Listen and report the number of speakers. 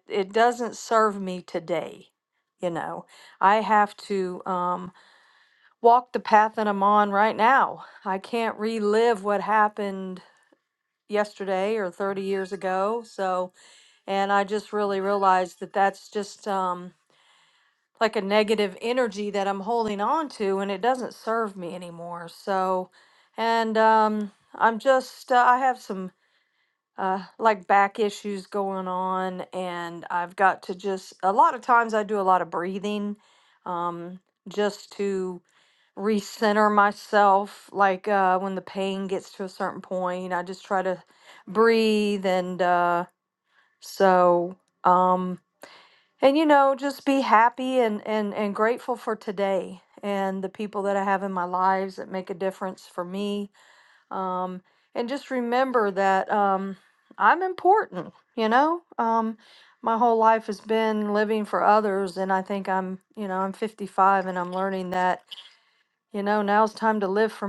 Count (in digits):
1